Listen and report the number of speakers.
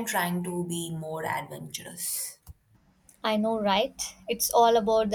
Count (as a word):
two